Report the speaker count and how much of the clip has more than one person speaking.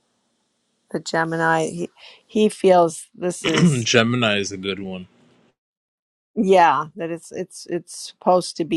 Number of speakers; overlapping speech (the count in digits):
2, about 3%